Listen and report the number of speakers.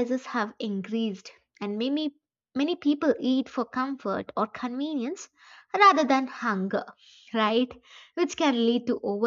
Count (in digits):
1